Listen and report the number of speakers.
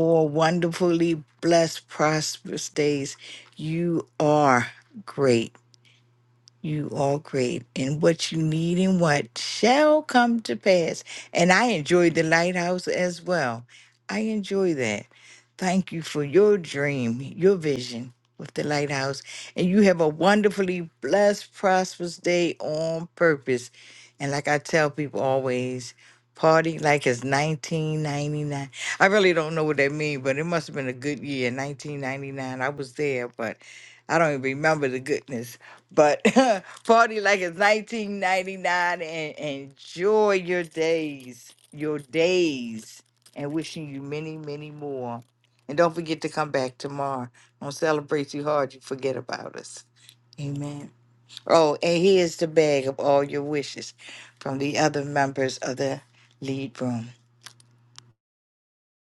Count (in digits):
1